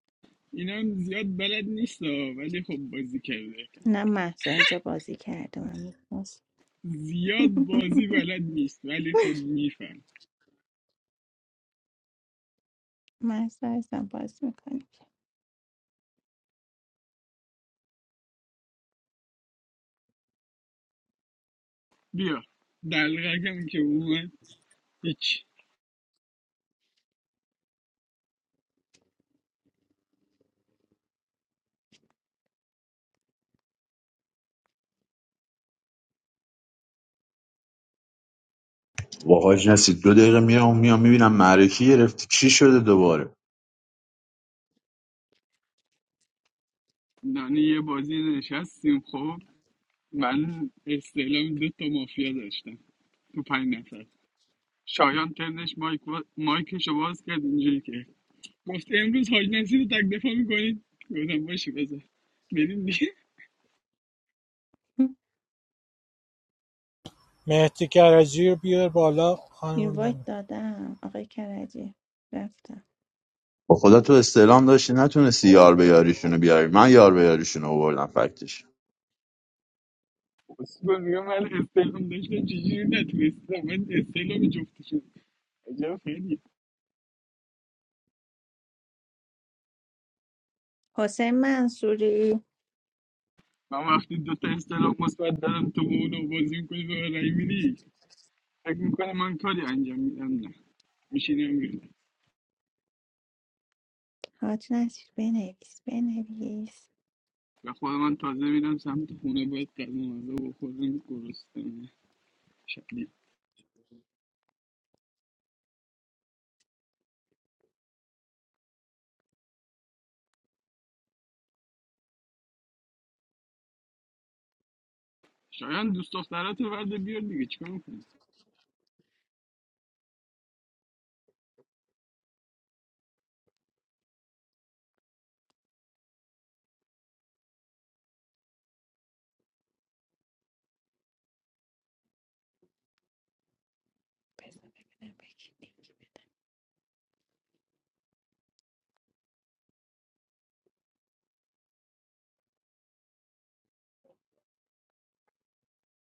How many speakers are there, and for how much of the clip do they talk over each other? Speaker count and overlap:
4, under 1%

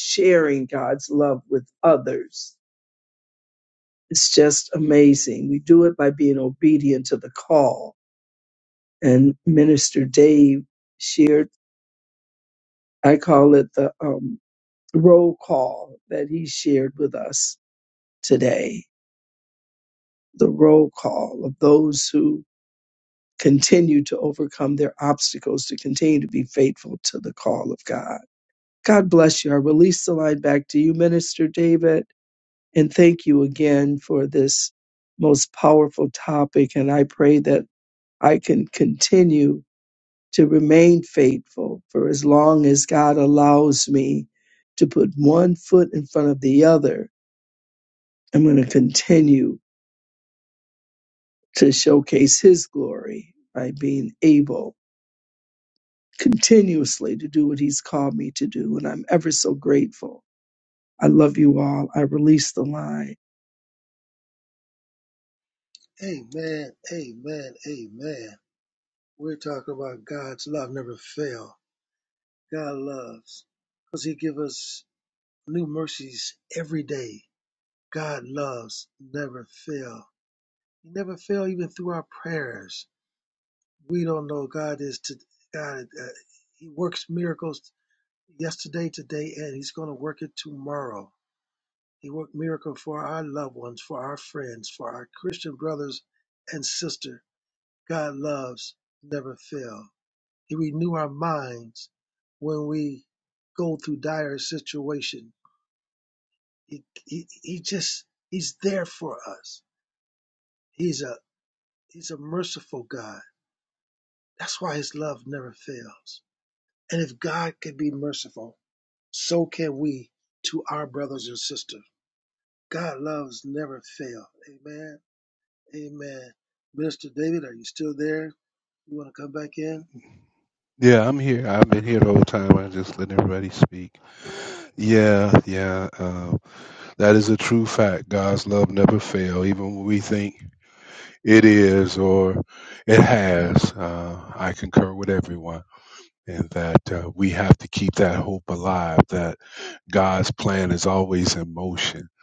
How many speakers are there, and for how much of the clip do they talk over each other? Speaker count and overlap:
3, no overlap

